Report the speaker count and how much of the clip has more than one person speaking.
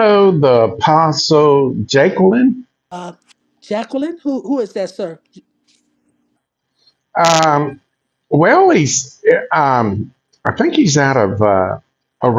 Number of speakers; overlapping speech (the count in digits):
2, no overlap